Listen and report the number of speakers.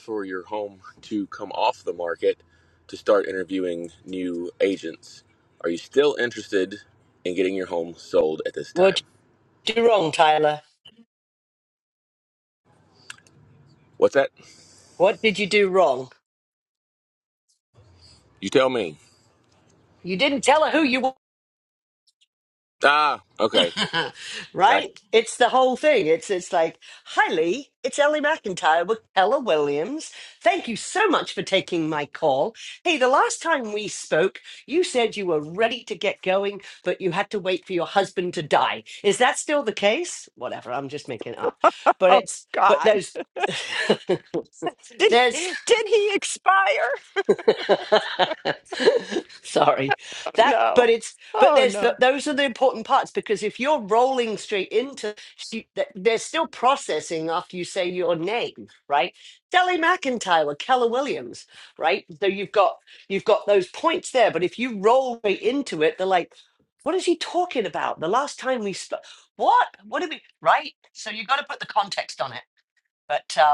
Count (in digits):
3